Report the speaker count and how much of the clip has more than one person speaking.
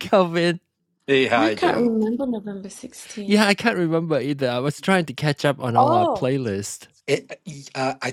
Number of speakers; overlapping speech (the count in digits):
3, about 14%